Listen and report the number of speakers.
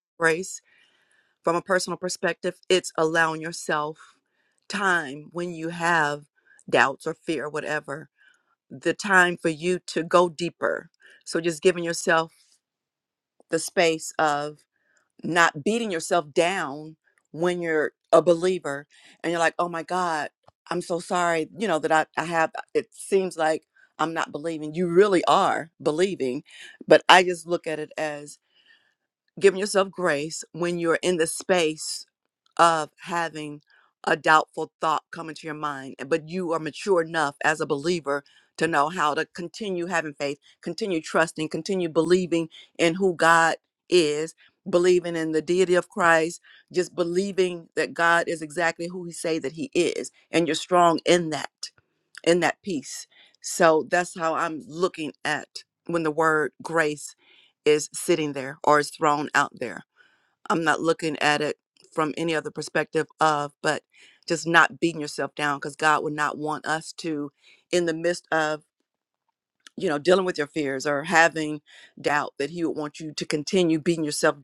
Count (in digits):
1